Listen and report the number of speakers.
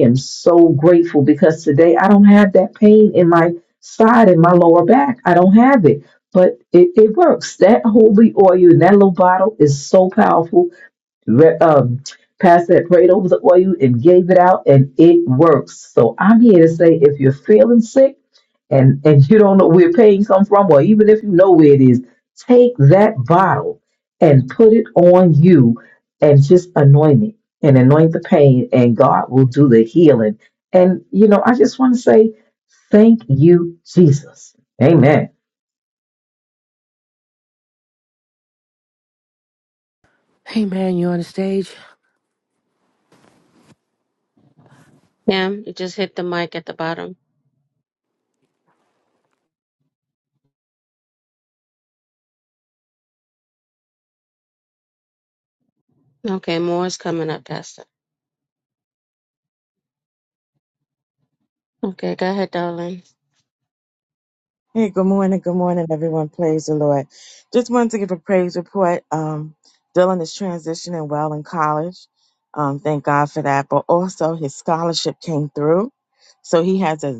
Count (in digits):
4